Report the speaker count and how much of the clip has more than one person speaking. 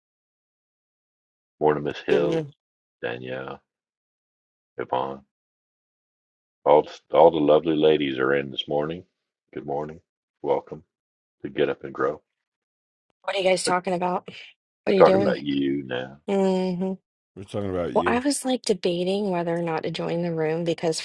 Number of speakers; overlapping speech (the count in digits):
3, about 6%